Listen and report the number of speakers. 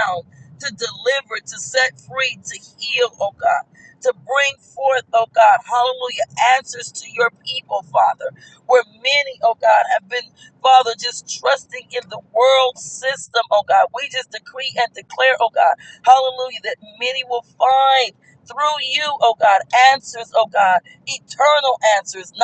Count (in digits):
1